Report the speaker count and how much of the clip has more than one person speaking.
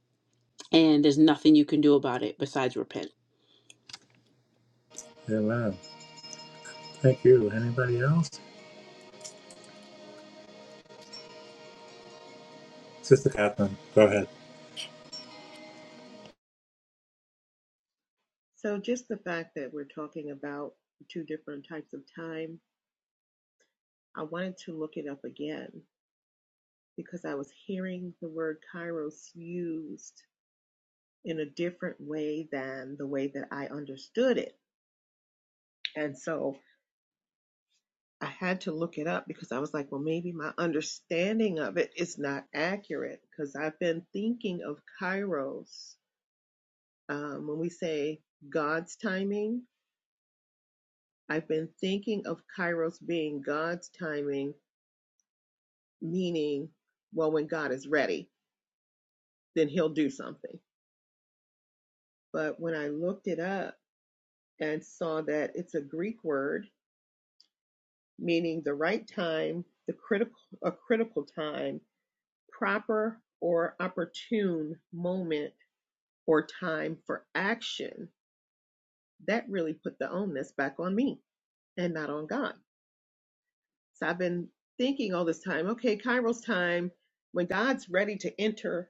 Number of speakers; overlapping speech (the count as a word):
three, no overlap